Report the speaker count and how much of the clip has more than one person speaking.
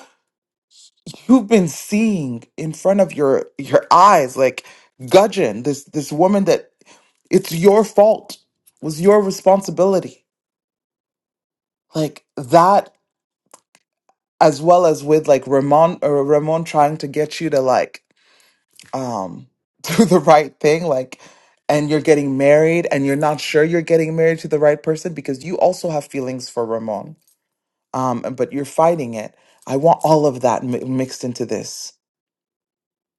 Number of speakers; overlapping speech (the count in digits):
1, no overlap